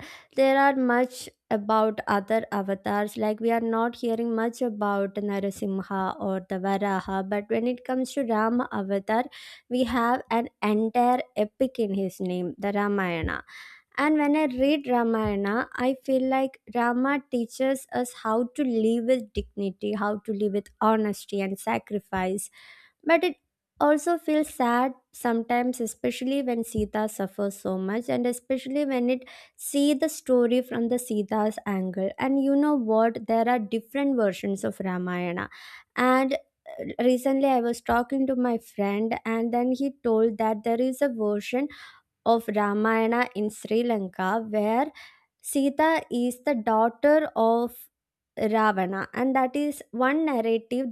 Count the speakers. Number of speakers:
1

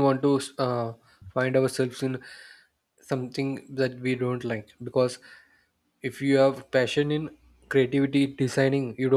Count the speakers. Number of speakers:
1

